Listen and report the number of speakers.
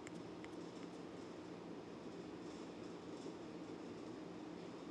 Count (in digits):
0